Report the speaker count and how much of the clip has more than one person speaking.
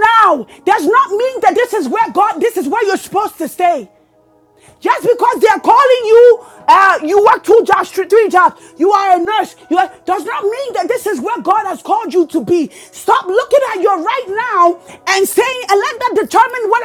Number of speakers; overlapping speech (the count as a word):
one, no overlap